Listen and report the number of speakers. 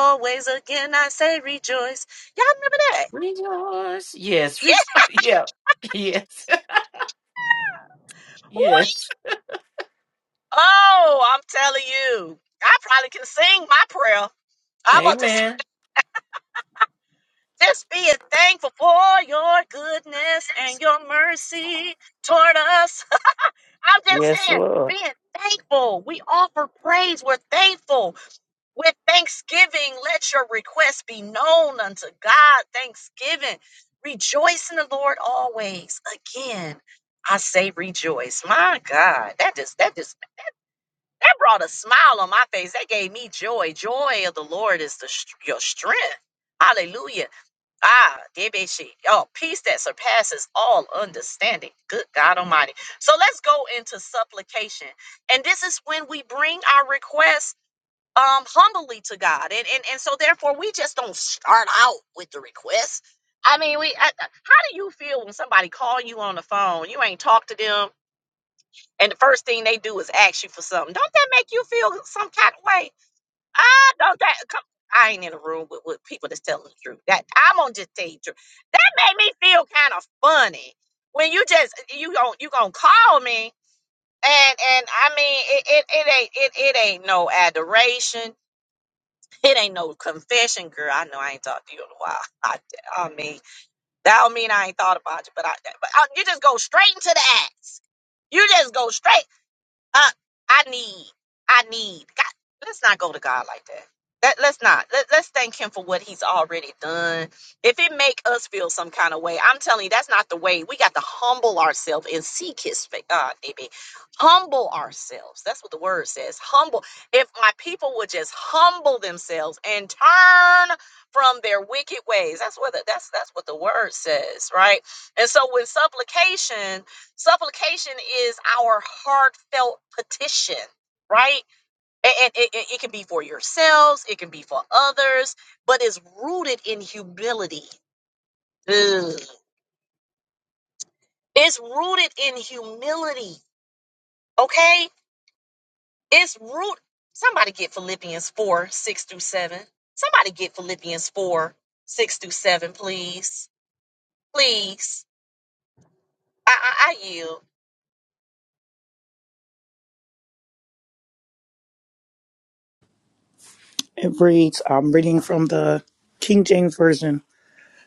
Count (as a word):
three